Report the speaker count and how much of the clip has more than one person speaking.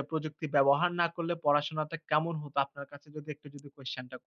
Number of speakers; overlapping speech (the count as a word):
one, no overlap